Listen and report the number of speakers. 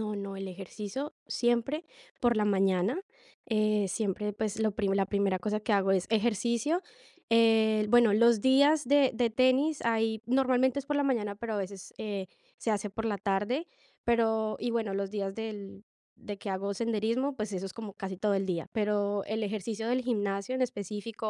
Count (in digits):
1